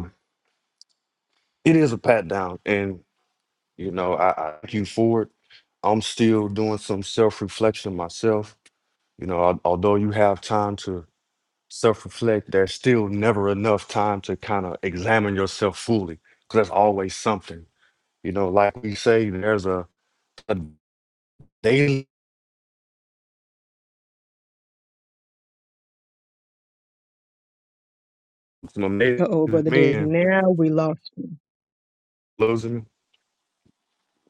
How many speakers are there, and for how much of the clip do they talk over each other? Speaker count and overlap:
two, about 1%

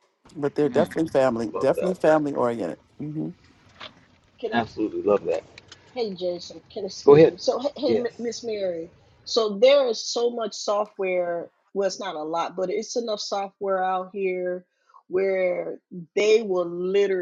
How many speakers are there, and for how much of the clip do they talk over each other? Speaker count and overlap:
three, about 6%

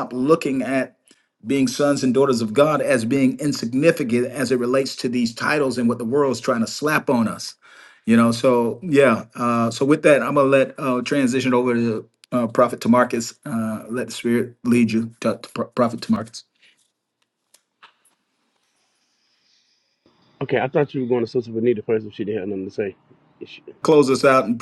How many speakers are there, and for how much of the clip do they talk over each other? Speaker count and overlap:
two, no overlap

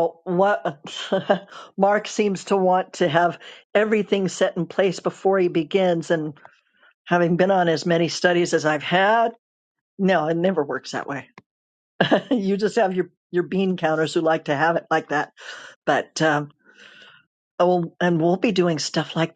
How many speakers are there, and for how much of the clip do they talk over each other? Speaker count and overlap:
one, no overlap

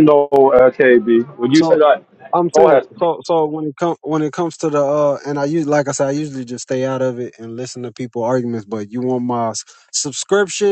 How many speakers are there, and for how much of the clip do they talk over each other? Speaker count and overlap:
two, about 3%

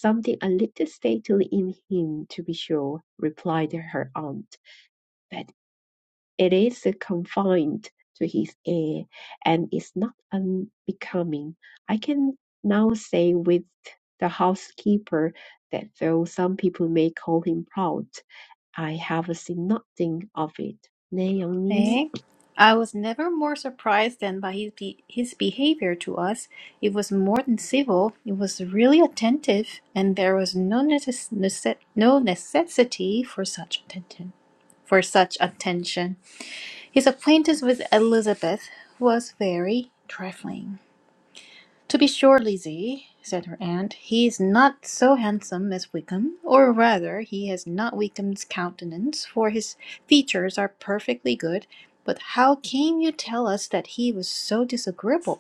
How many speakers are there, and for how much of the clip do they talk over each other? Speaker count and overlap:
two, about 1%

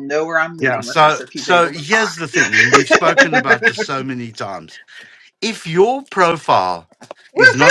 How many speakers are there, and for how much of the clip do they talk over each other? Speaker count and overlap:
two, about 30%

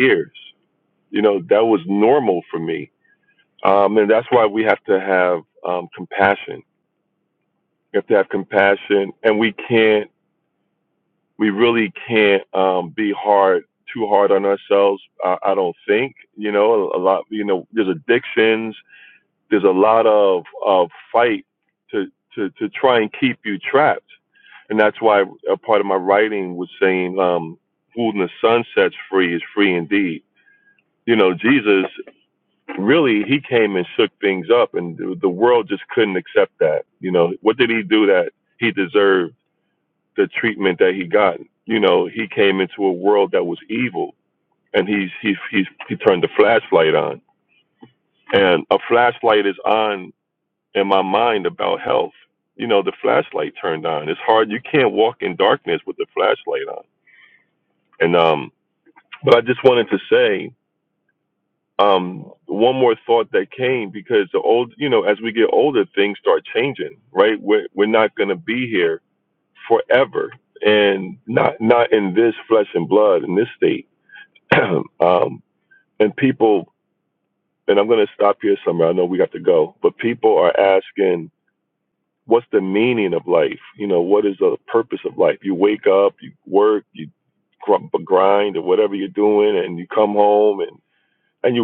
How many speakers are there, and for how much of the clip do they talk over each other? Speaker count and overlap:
one, no overlap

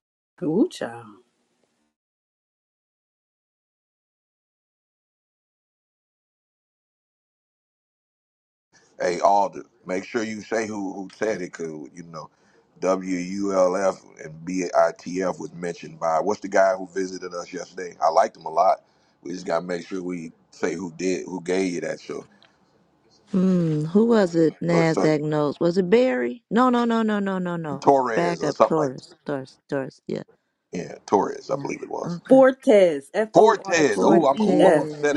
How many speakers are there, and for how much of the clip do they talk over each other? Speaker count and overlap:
three, about 10%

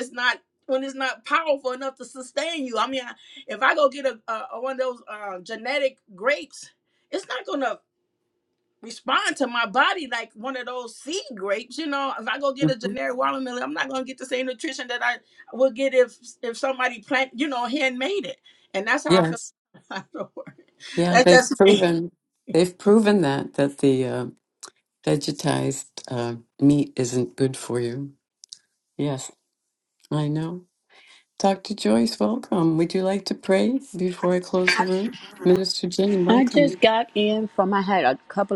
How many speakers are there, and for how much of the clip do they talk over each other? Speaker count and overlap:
three, about 5%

